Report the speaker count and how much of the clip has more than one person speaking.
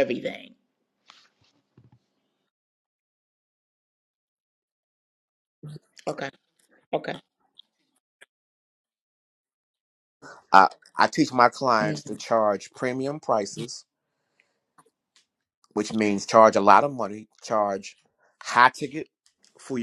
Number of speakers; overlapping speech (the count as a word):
two, about 2%